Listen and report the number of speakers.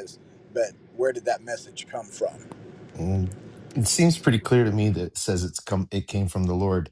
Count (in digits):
2